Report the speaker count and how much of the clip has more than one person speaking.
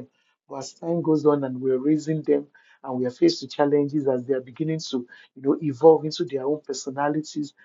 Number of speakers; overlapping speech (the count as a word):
one, no overlap